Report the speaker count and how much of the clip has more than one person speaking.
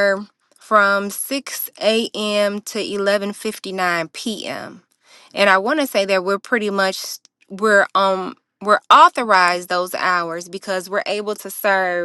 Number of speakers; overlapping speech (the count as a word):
one, no overlap